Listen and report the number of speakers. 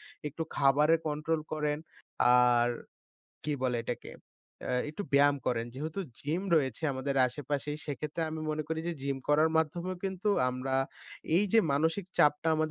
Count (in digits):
1